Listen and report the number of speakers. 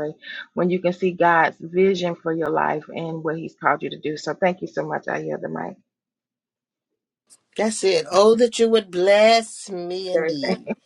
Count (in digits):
2